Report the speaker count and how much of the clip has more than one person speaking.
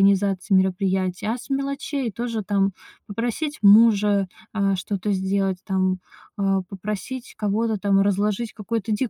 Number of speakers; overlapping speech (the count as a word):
one, no overlap